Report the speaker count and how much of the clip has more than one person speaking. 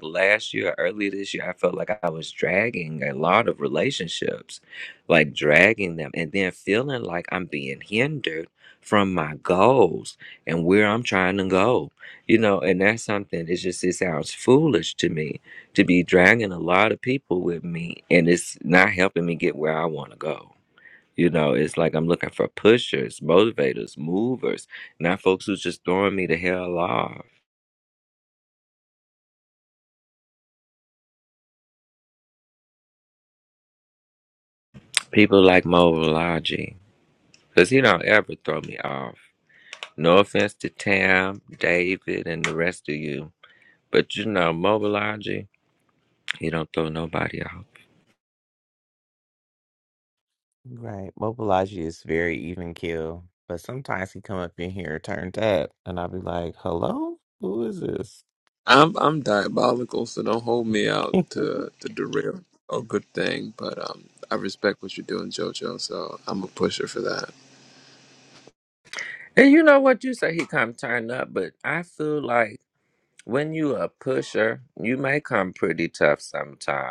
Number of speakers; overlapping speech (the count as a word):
three, no overlap